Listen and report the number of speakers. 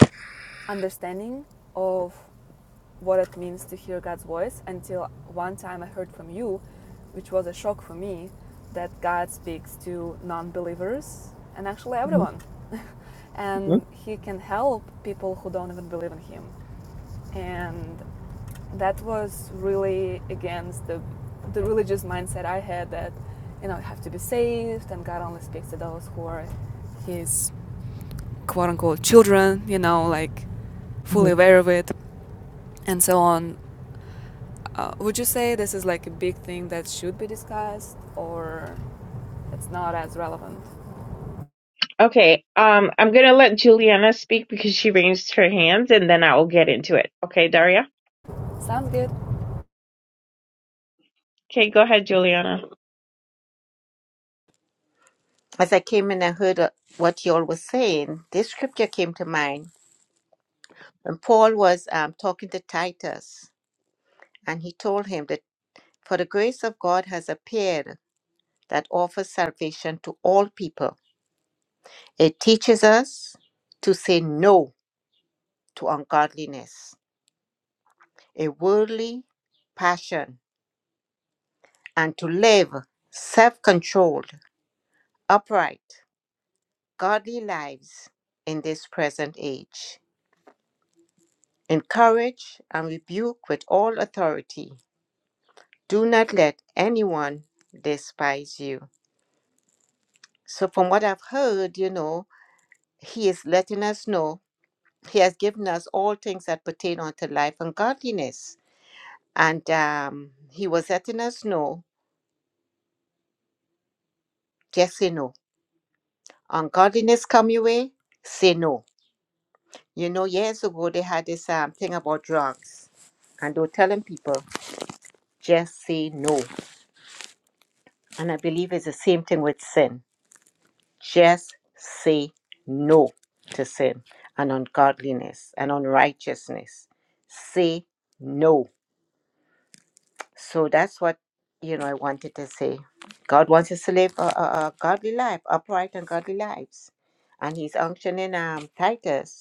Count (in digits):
3